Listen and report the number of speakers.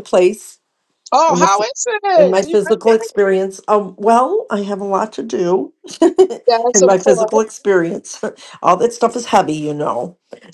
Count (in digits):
2